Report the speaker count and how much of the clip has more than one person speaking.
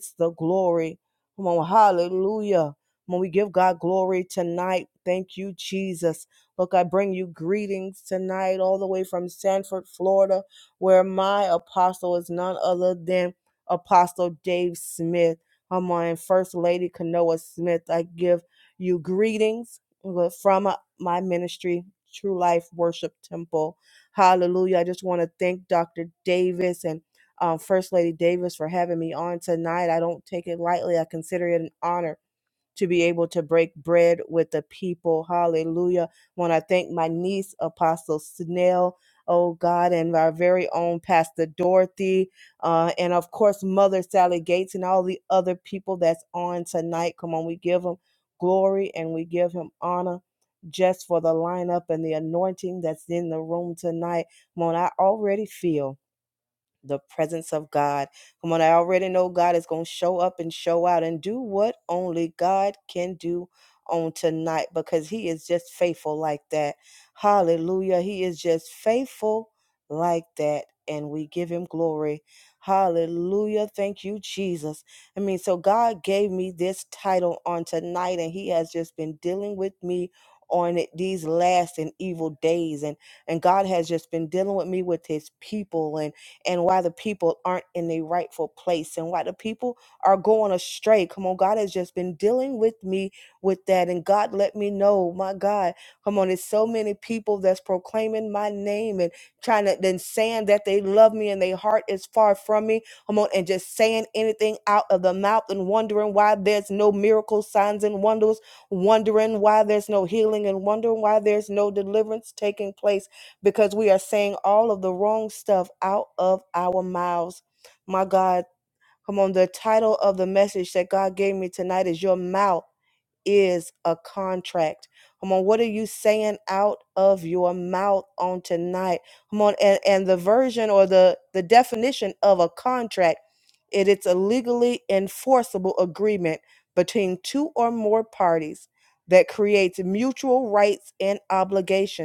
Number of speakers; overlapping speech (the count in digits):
1, no overlap